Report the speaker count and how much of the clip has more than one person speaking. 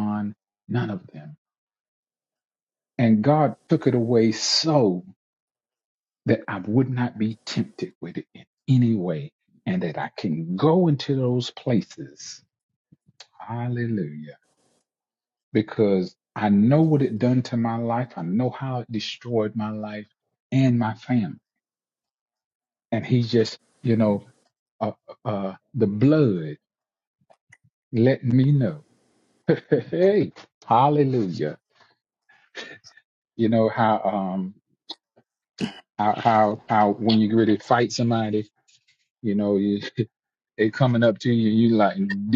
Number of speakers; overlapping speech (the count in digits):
1, no overlap